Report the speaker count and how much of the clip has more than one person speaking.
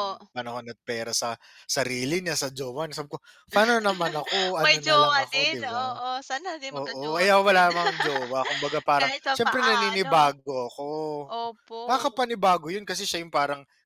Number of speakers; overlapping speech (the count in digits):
2, about 28%